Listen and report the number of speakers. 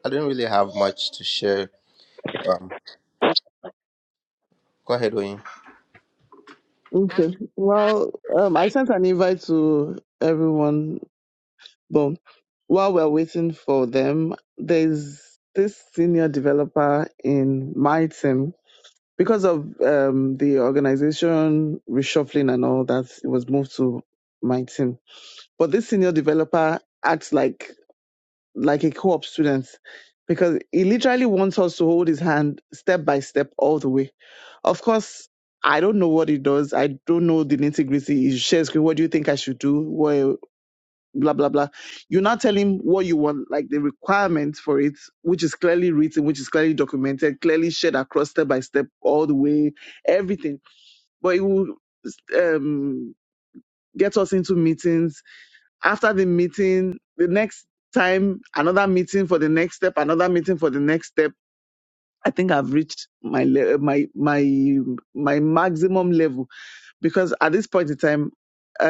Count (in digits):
2